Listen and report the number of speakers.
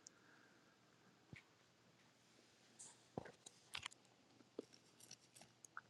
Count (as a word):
zero